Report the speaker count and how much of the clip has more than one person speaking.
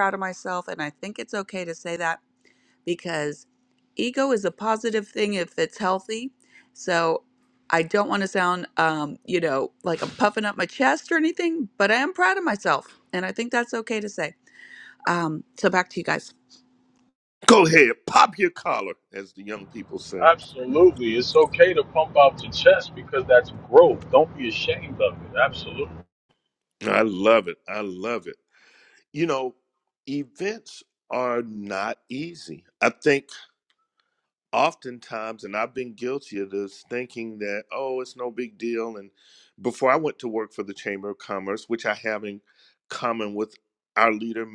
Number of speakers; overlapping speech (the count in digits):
3, under 1%